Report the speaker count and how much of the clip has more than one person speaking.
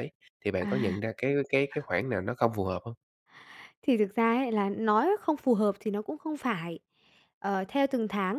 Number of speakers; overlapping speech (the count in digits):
2, about 5%